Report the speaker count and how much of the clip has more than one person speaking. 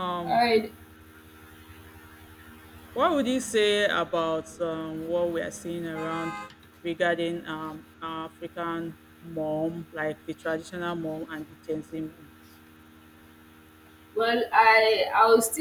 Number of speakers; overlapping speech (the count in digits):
2, about 1%